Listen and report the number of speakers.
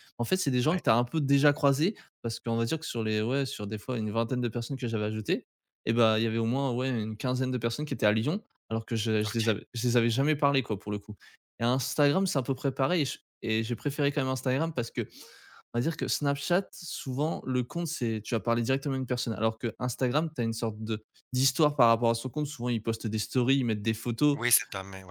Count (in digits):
2